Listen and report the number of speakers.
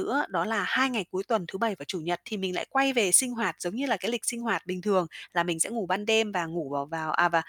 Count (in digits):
1